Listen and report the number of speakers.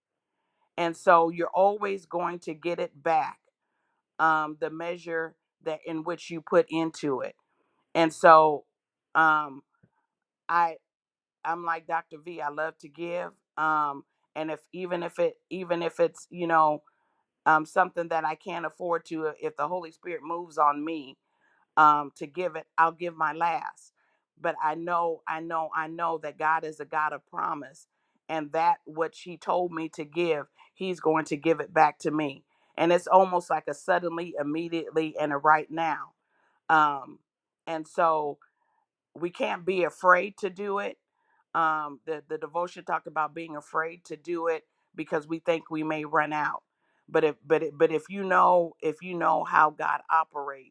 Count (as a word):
one